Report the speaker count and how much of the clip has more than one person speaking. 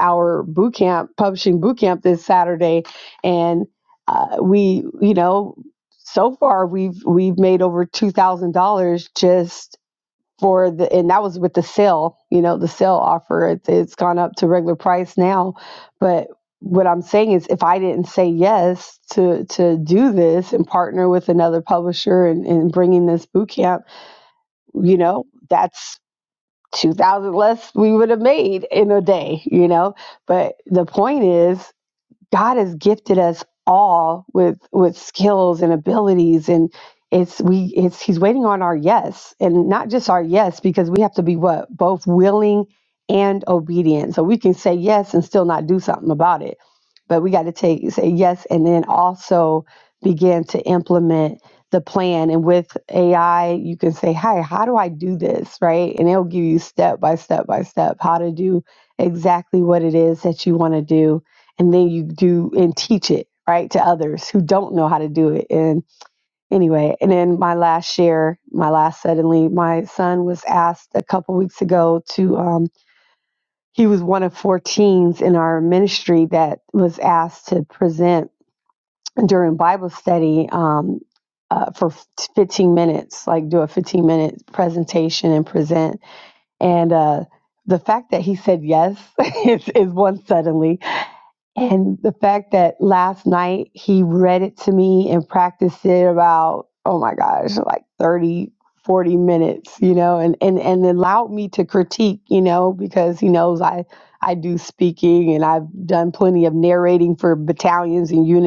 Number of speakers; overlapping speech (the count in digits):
1, no overlap